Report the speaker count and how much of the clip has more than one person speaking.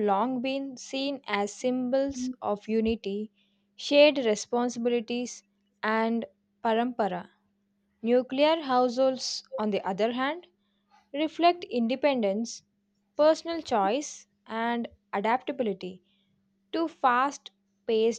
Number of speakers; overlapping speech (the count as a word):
one, no overlap